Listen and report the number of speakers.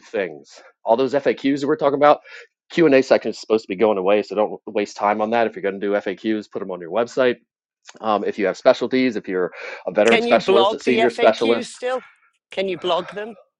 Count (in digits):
2